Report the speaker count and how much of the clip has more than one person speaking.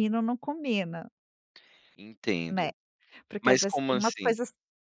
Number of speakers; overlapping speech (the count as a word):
two, about 23%